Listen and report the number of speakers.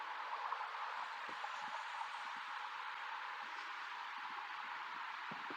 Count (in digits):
0